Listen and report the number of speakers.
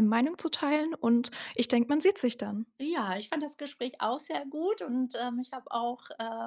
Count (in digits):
2